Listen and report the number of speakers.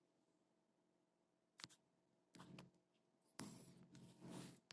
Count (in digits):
0